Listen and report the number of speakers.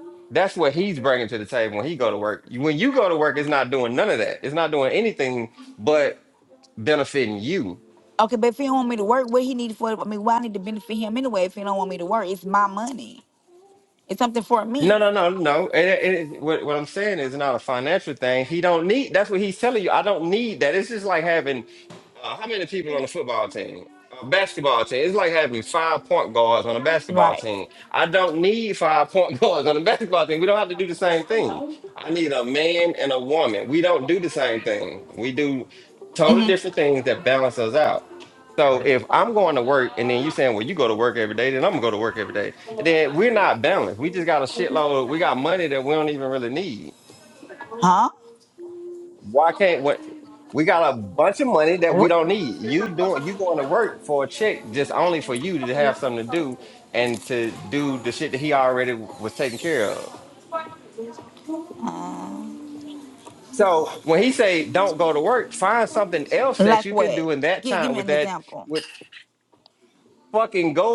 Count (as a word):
two